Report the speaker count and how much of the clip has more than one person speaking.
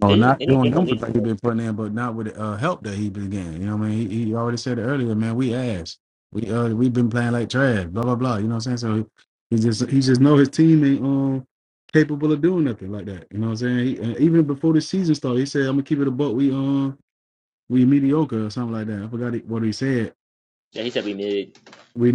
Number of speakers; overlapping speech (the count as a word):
two, about 6%